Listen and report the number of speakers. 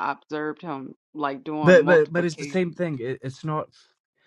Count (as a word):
two